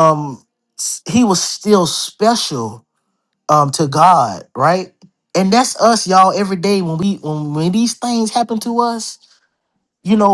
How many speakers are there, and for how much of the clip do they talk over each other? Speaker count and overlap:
1, no overlap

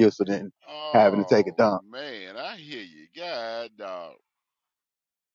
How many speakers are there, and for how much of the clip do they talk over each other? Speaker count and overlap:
2, about 12%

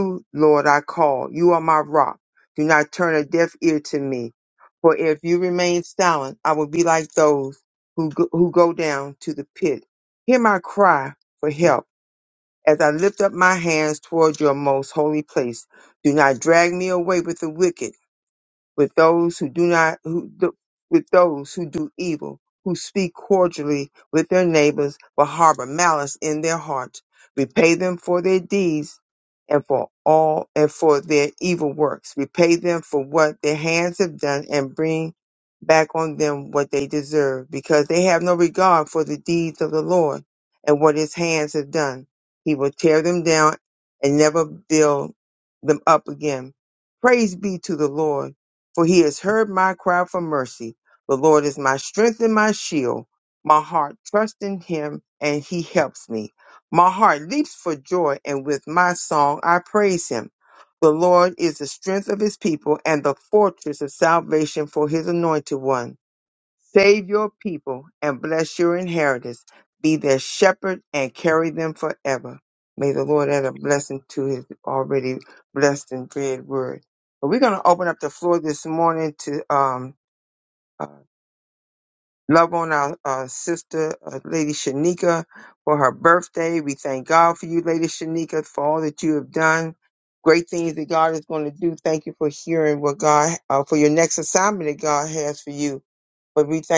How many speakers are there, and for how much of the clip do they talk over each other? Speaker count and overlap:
1, no overlap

